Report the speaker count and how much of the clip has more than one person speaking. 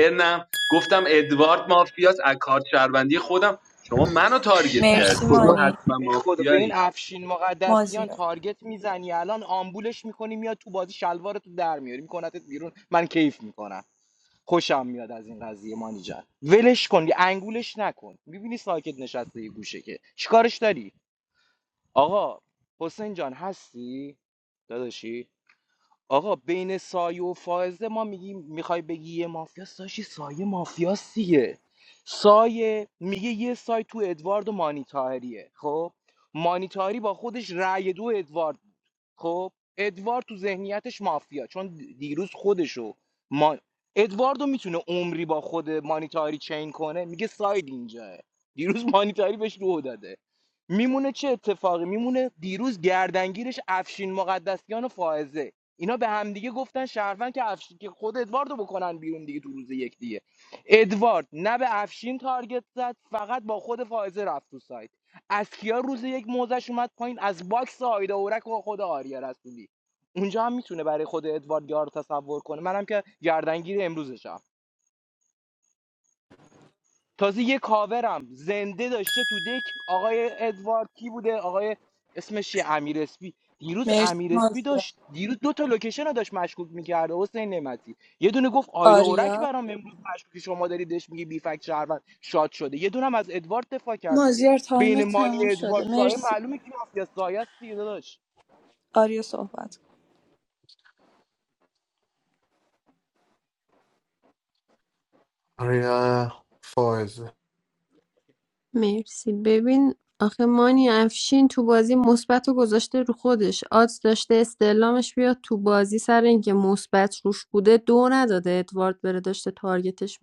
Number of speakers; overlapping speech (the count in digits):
5, about 5%